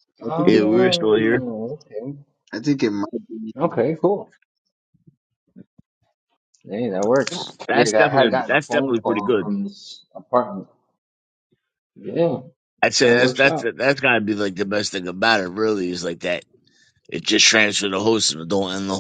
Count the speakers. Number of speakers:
3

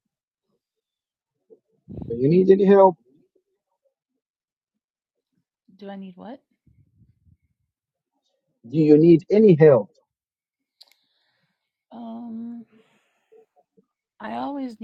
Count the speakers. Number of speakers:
2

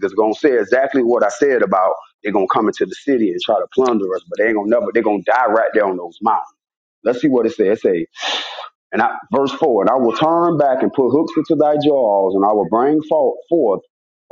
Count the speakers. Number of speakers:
1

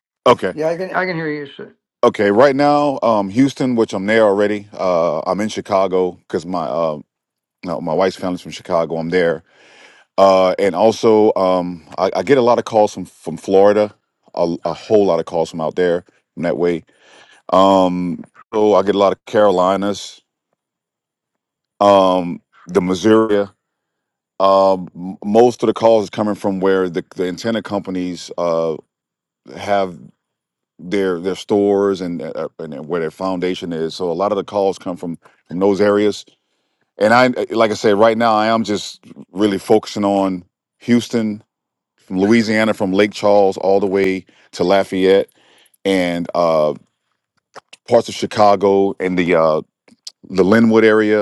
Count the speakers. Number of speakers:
2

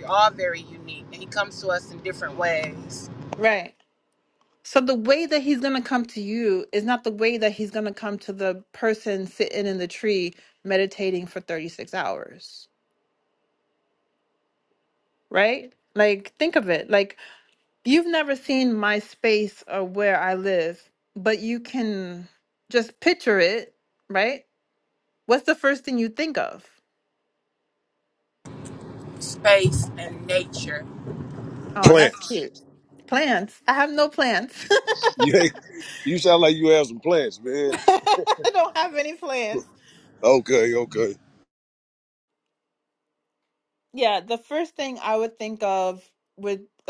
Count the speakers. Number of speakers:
3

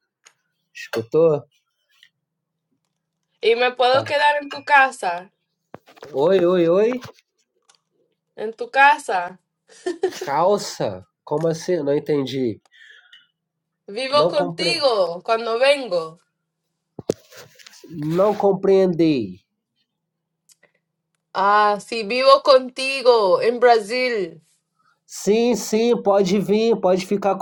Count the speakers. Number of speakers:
2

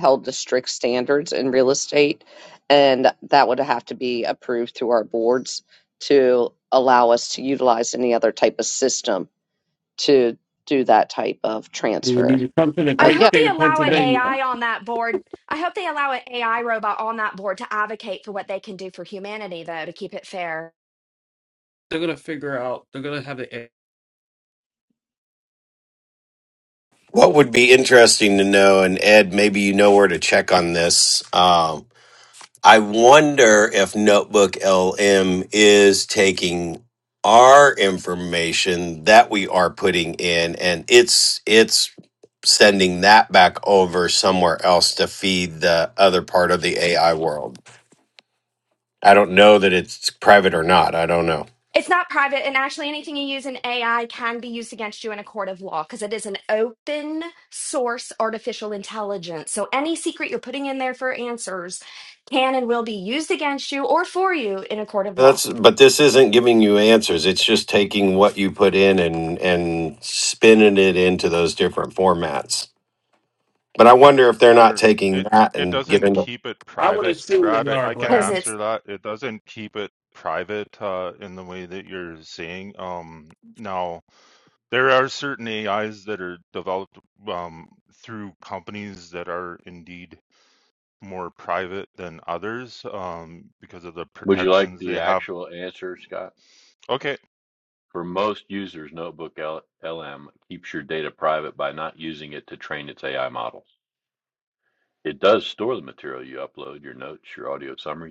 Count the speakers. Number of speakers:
6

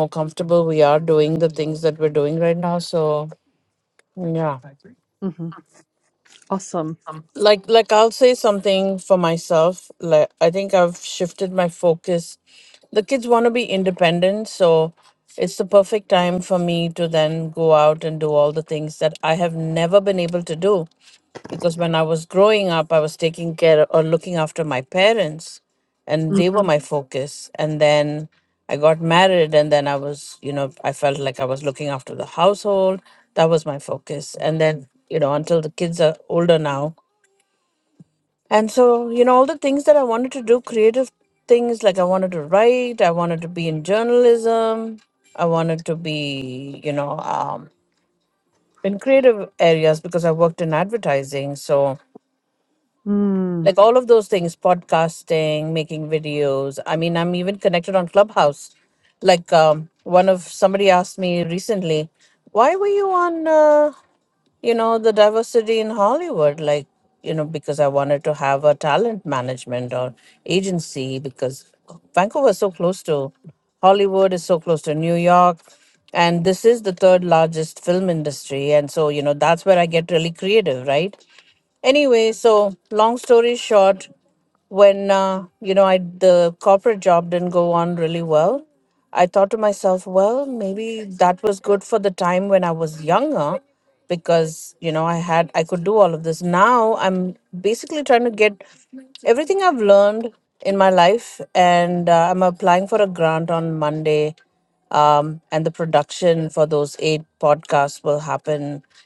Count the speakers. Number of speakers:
2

